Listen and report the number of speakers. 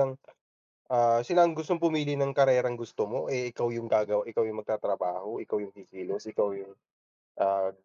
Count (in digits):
1